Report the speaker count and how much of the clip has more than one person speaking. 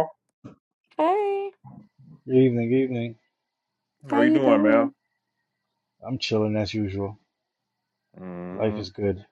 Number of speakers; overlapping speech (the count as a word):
three, about 11%